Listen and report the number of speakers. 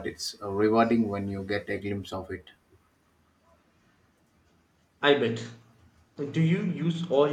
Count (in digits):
2